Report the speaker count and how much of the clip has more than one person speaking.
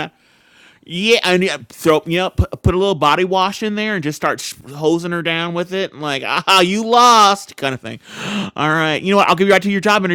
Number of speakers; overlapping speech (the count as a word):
one, no overlap